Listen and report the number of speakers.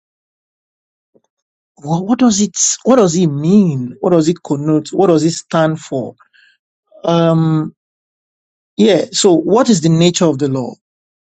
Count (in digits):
1